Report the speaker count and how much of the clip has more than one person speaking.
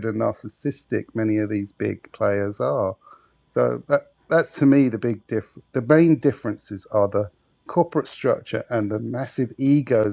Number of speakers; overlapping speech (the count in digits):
1, no overlap